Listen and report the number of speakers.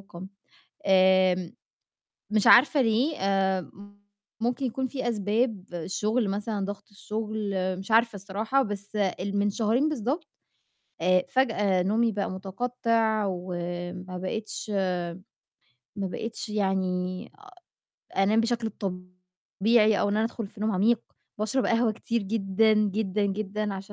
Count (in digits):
1